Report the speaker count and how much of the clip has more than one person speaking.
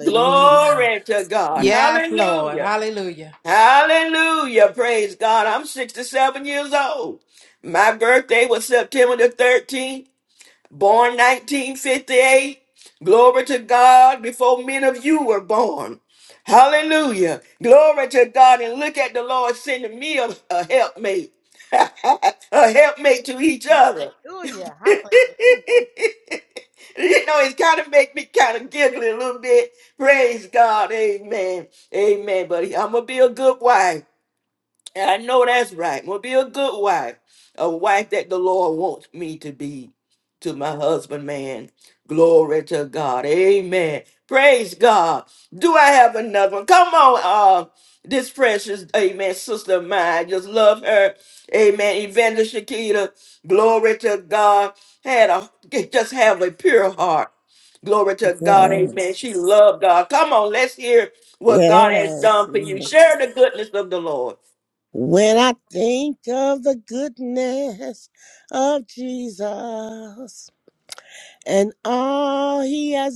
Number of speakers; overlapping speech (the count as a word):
four, about 6%